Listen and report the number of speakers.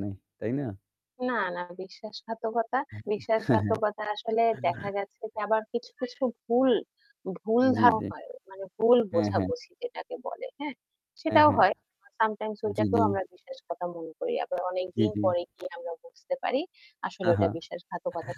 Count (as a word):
two